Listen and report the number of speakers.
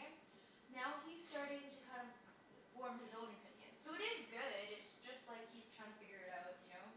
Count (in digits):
1